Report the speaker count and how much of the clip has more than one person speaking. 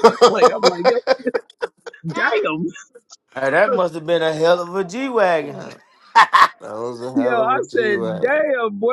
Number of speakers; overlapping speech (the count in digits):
3, about 18%